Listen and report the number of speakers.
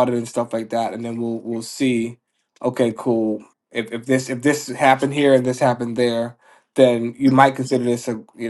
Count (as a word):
one